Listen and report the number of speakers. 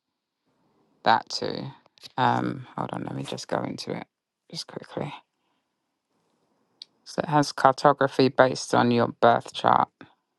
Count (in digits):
1